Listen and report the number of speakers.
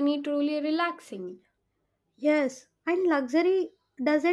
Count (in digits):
2